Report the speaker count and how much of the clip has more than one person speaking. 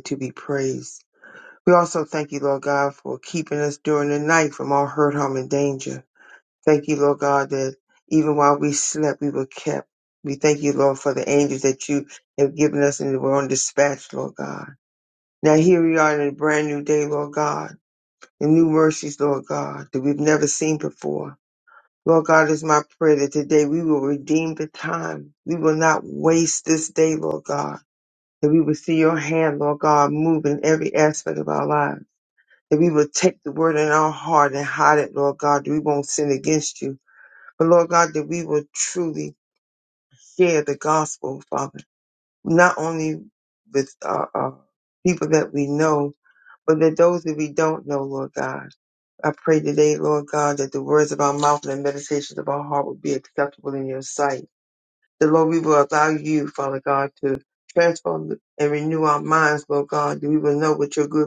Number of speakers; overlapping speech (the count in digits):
1, no overlap